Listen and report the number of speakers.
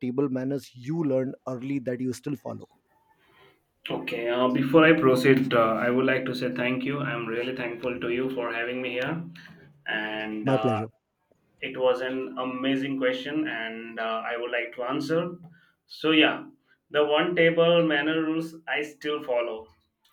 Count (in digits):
2